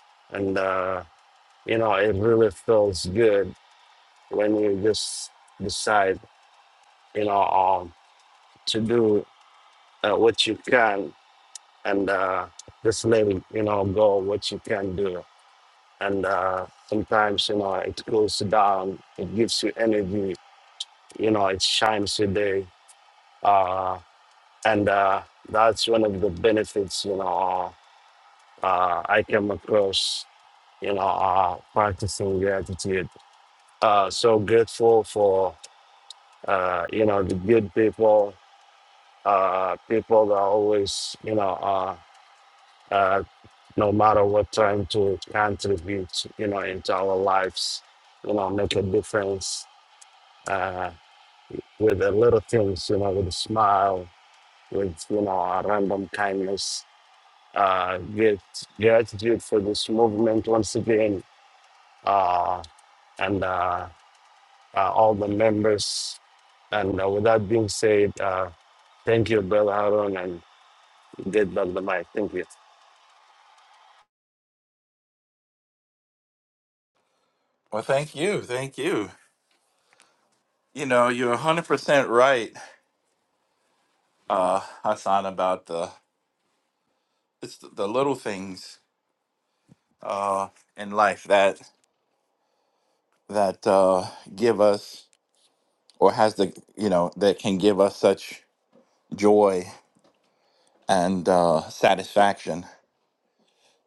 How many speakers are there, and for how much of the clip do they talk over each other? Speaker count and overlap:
2, no overlap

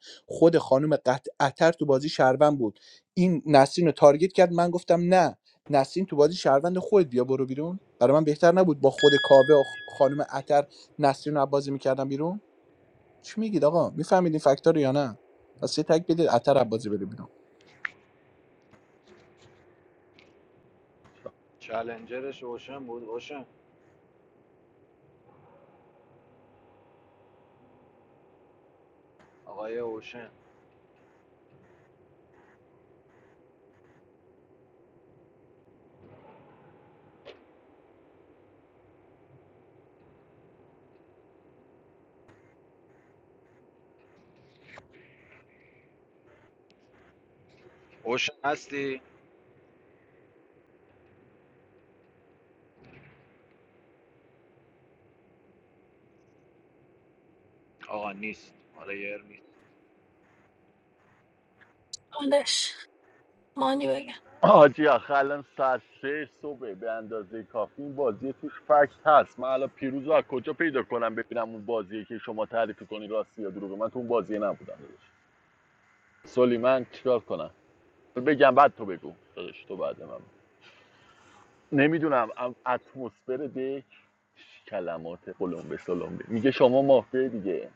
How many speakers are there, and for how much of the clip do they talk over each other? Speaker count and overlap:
4, no overlap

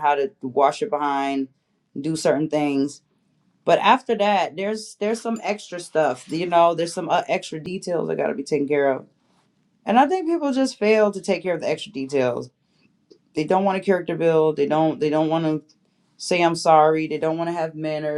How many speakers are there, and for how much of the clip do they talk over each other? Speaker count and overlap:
1, no overlap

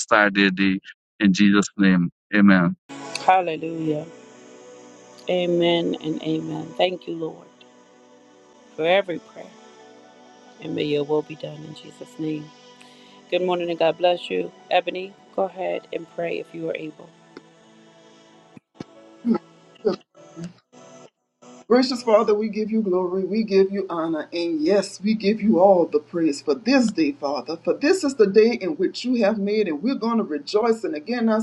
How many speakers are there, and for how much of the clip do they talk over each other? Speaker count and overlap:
3, no overlap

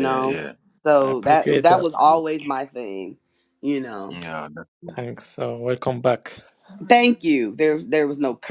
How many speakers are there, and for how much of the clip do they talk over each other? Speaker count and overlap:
3, about 17%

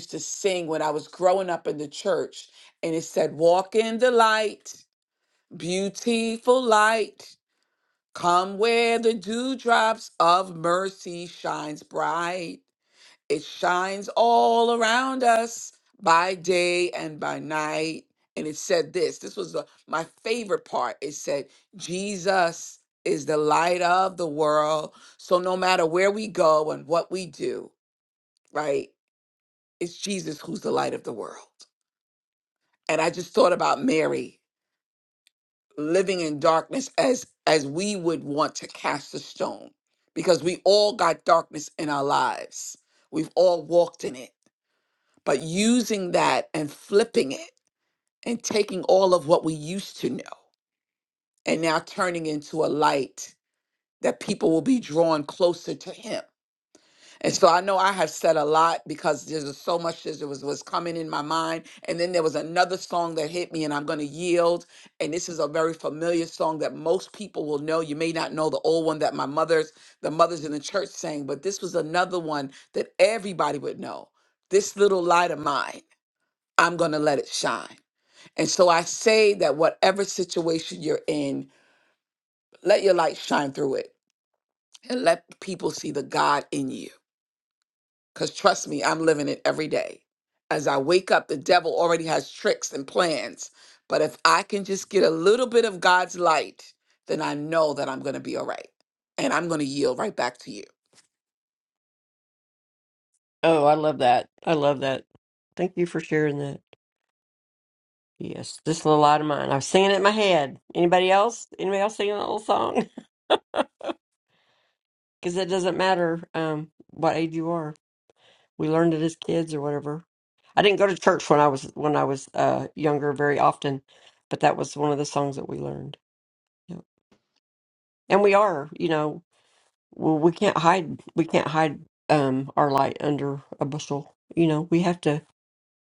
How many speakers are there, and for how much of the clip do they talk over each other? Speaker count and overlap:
2, no overlap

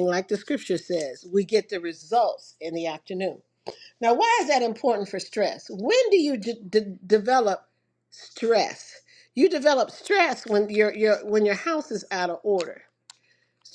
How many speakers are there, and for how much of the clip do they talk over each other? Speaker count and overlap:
1, no overlap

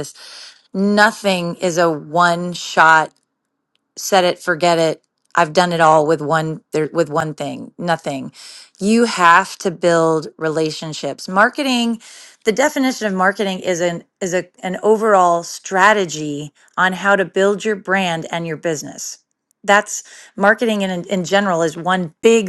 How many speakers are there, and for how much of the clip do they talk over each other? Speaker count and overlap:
1, no overlap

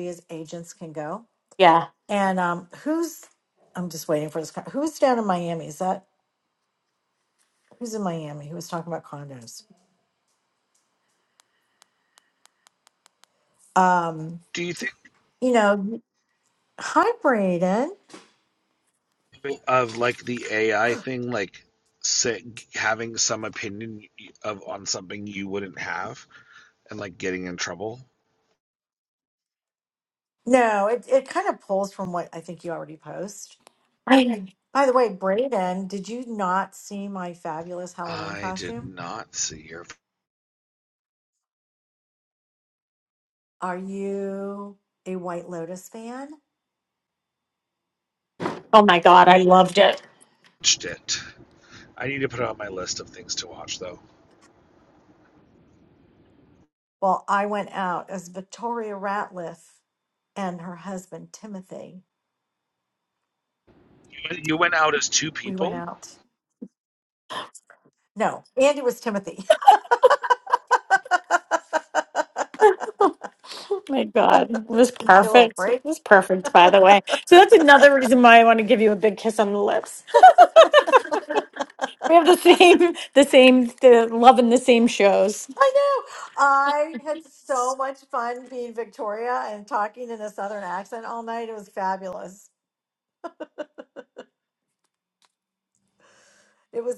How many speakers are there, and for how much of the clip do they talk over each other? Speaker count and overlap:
3, about 2%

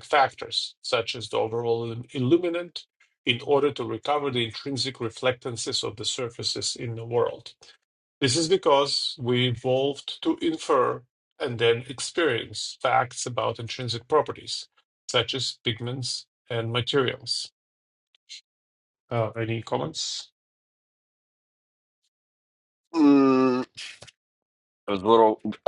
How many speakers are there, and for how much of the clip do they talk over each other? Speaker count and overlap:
2, no overlap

